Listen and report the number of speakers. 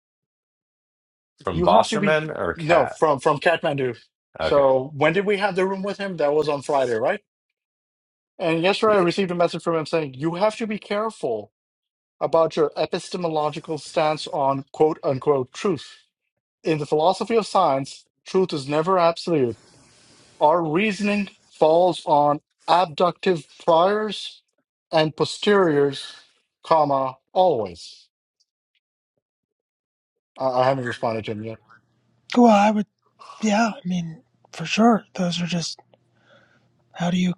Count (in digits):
3